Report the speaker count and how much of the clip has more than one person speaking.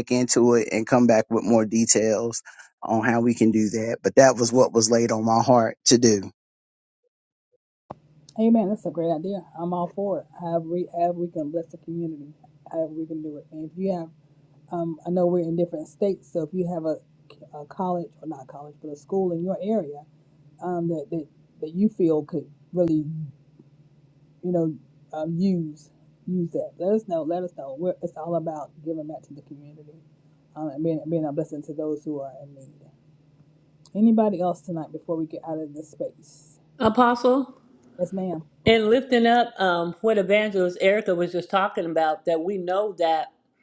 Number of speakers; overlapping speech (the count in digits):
3, no overlap